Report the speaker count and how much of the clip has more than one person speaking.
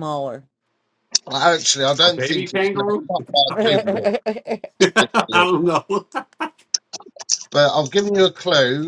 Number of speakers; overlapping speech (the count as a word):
three, about 24%